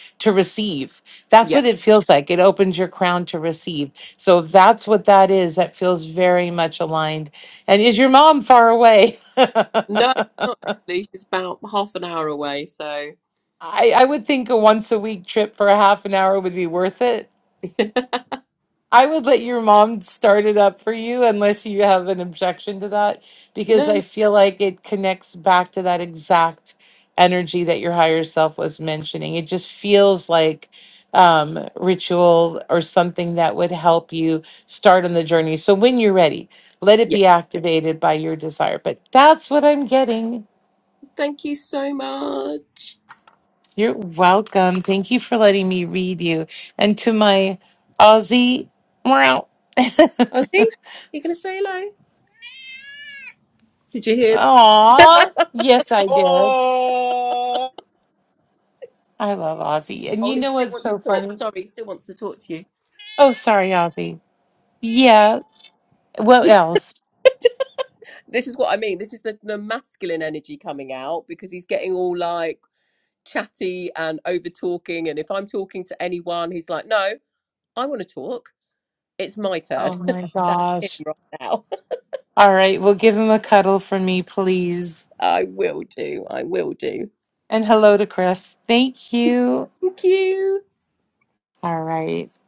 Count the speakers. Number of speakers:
three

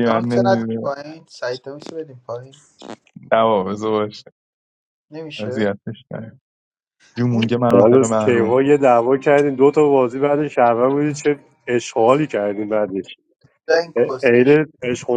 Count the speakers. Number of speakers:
three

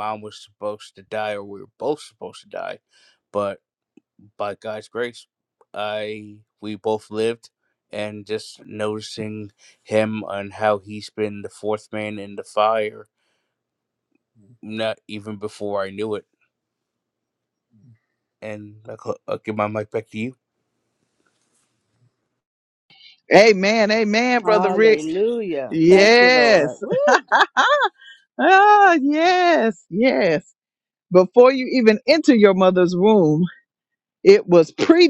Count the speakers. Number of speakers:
three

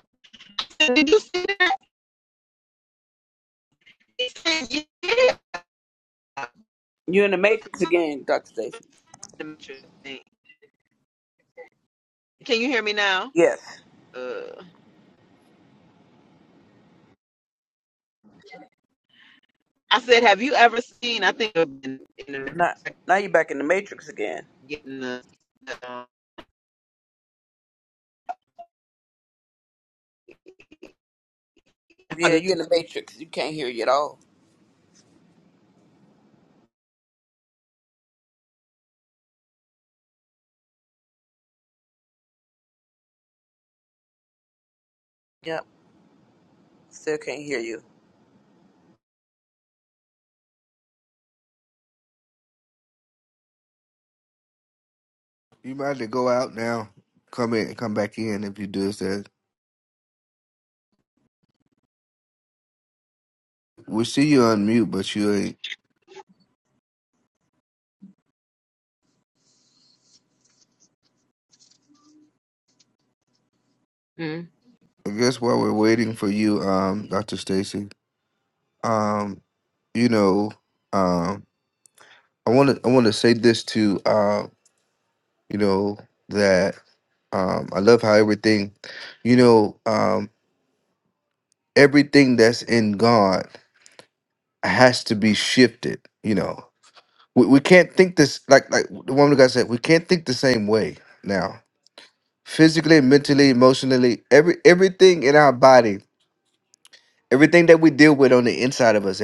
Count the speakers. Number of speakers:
three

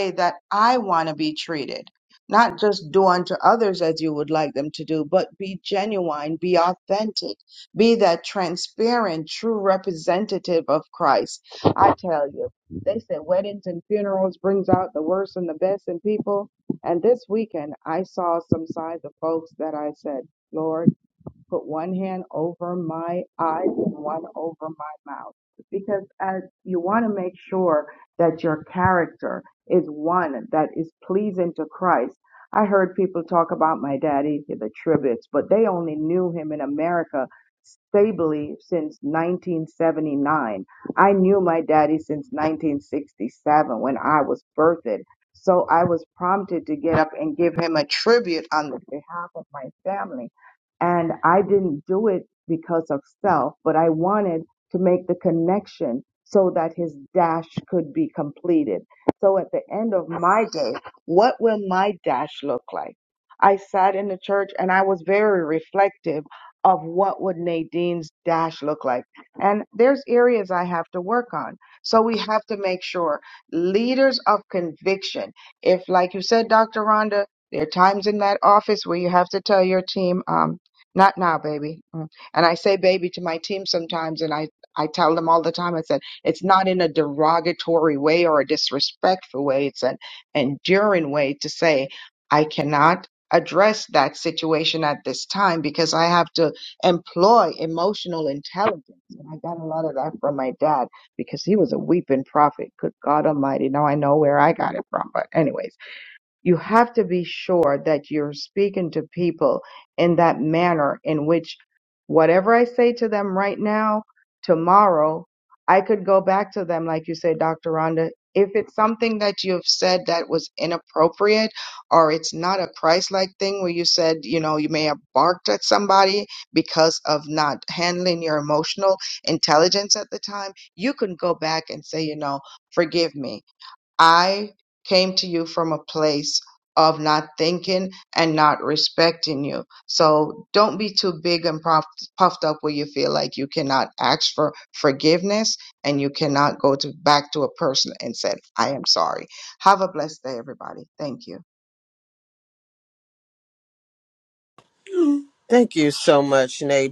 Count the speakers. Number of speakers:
two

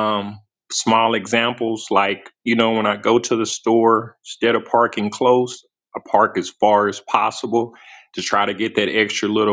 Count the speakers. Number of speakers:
one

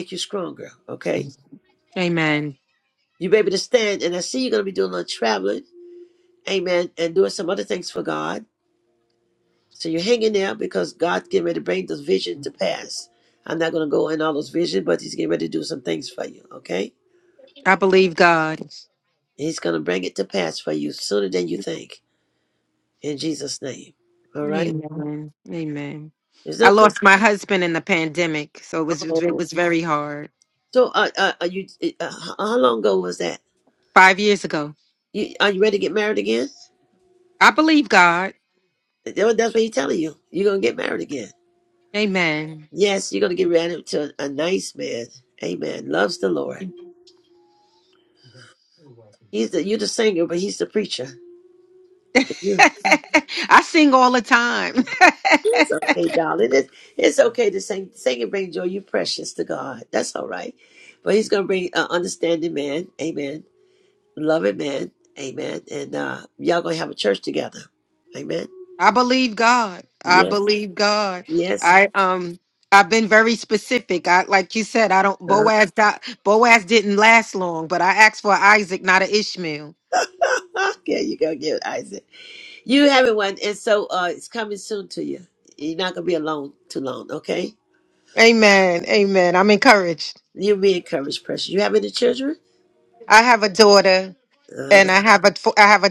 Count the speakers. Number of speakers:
two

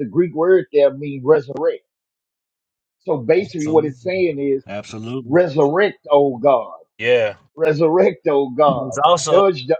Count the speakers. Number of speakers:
two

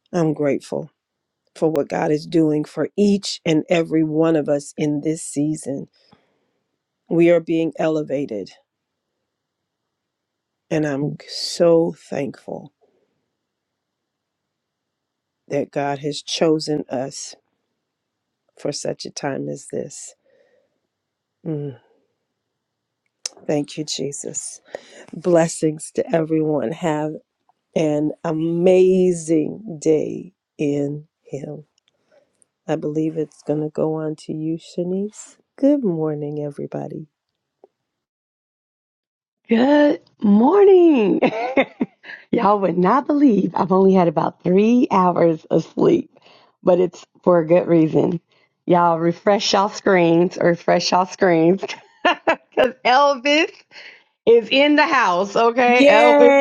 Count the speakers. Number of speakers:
two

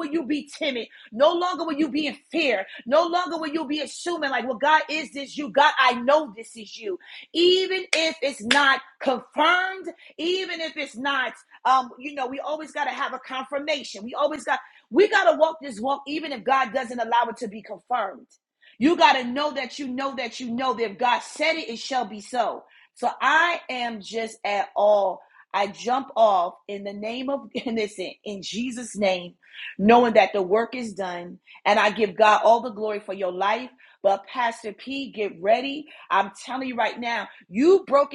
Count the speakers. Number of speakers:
one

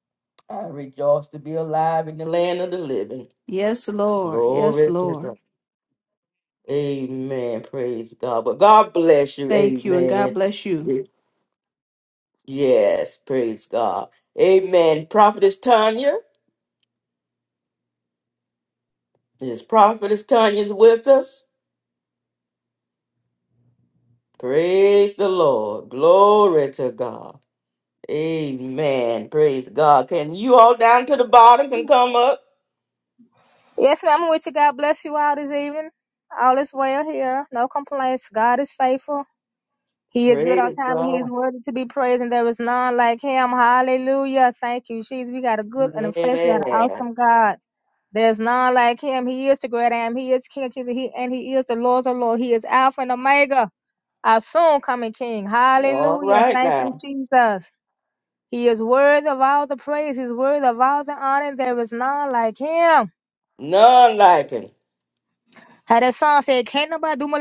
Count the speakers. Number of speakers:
three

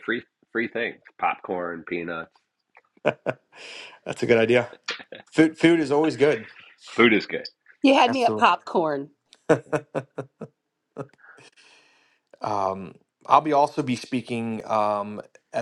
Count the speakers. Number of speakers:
three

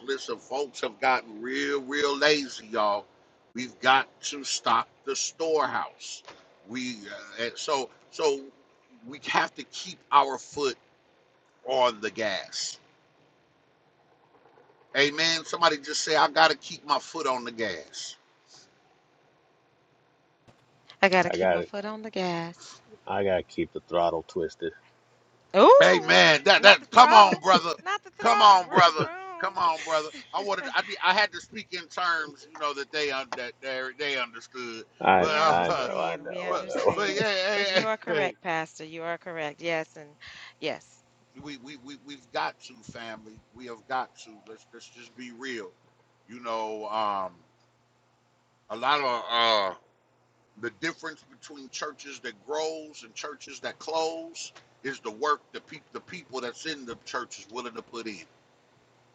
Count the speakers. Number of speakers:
three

